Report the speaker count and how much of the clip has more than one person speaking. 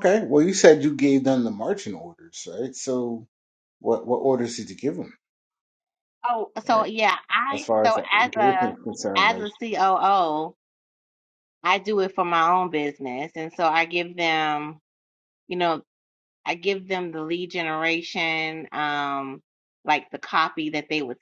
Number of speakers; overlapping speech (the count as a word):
two, about 8%